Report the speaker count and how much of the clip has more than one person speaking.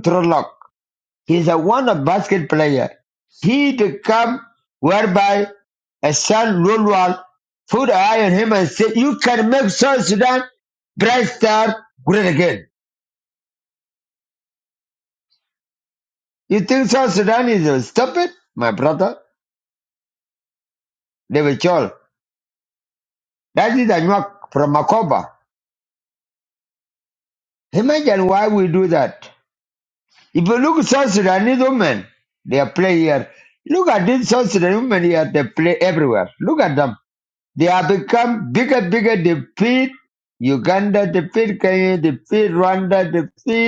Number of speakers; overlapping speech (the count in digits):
1, no overlap